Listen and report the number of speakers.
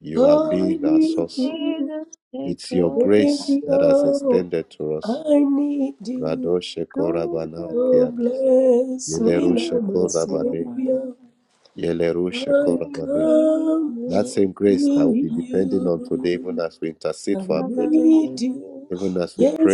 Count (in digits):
3